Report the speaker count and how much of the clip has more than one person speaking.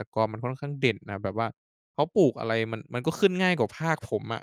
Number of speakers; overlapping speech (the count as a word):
one, no overlap